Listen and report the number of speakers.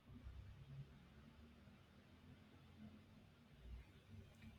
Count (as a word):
zero